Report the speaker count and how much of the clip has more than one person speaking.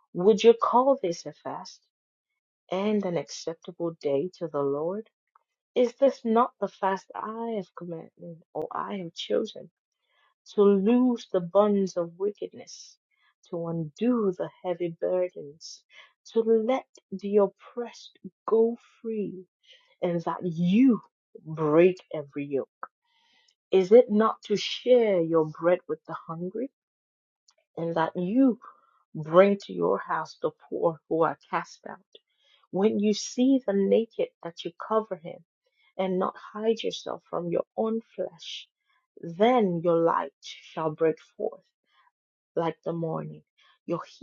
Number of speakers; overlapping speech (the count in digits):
1, no overlap